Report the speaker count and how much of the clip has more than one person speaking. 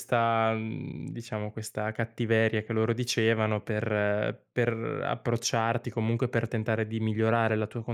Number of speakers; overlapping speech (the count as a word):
one, no overlap